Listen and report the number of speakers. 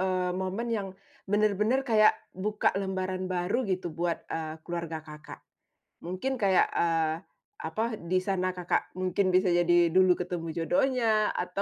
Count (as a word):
one